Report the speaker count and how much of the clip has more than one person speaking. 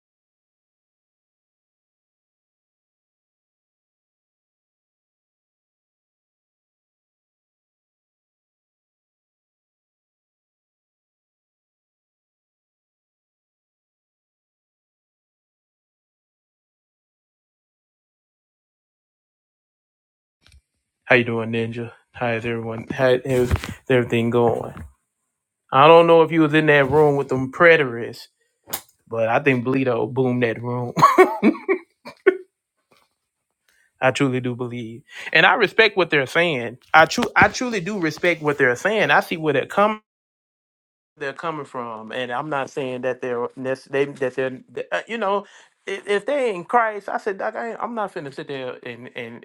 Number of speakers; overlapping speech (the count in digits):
1, no overlap